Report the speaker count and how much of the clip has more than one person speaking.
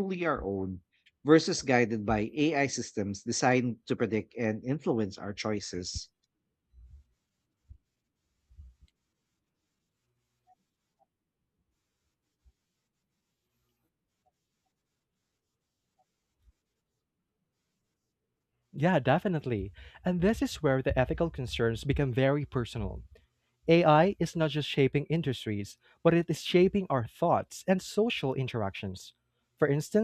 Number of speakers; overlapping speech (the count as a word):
two, no overlap